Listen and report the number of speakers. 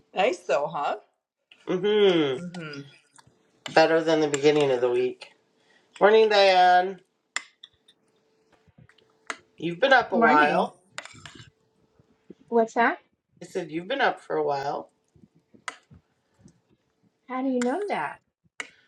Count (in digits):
3